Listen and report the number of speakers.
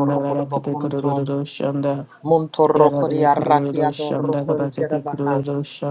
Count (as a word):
two